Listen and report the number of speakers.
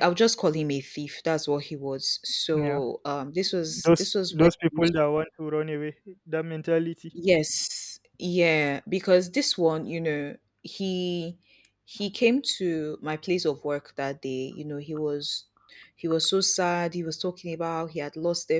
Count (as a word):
two